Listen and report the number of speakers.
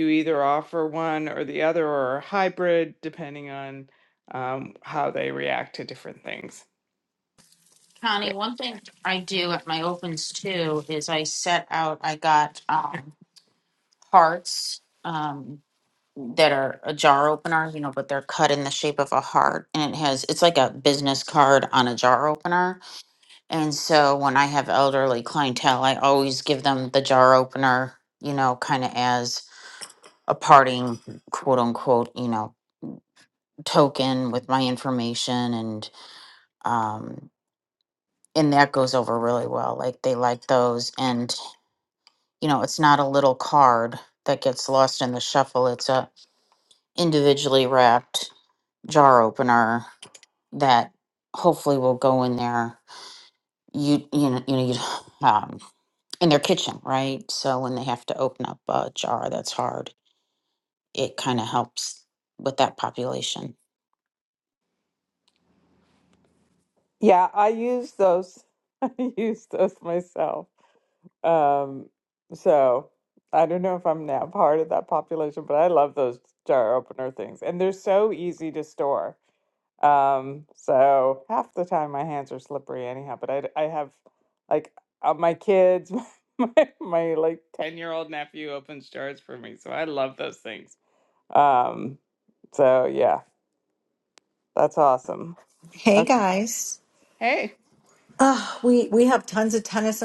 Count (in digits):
3